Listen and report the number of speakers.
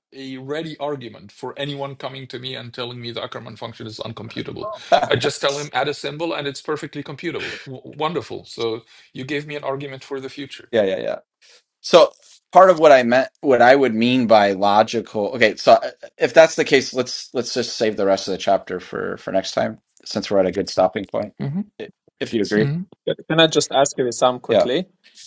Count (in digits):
3